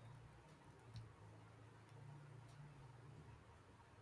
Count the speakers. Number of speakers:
zero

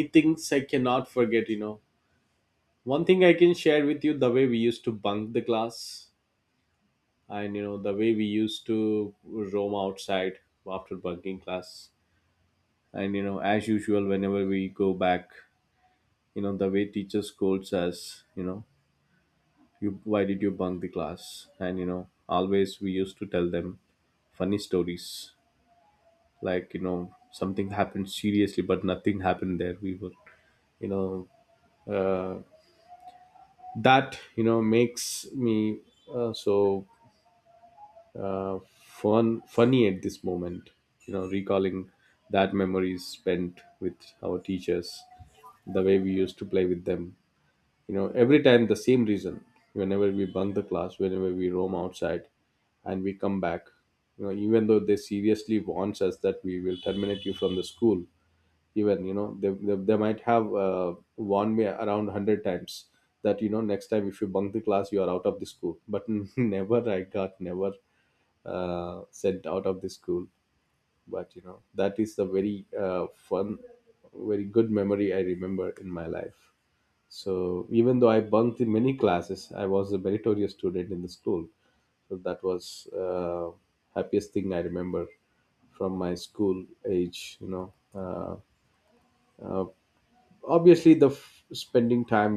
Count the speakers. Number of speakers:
one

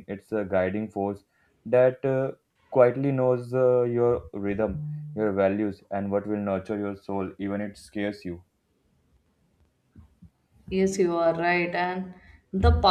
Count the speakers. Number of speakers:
two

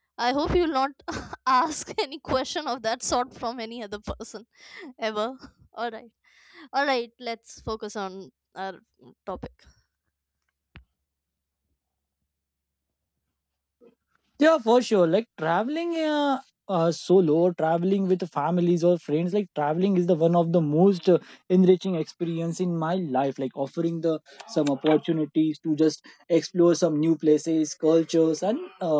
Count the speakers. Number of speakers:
two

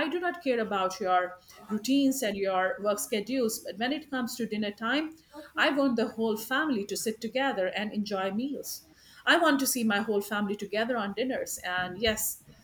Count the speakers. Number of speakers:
one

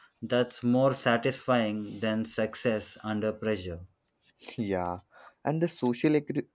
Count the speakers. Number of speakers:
two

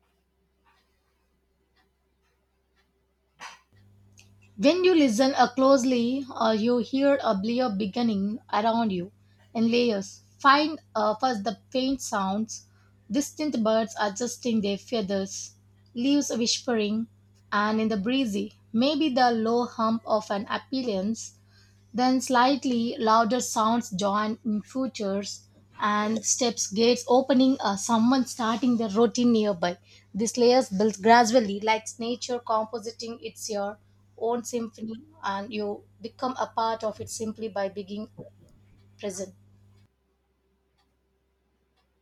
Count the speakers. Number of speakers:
one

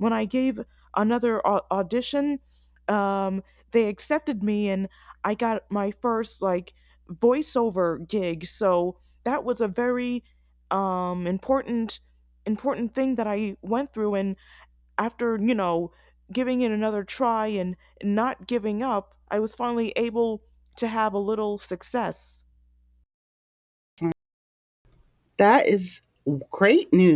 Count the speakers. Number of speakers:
two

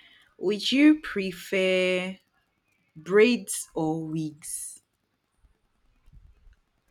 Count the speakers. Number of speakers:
one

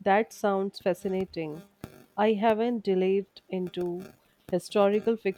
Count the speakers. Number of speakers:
one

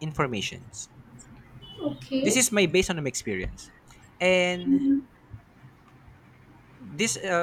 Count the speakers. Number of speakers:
two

